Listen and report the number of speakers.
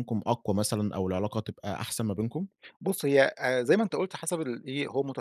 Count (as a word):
two